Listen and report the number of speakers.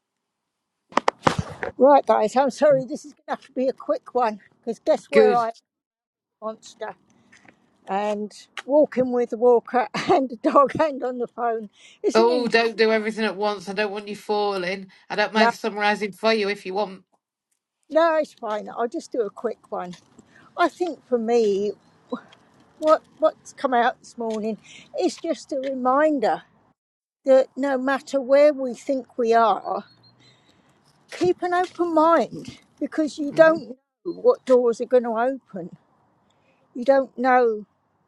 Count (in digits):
2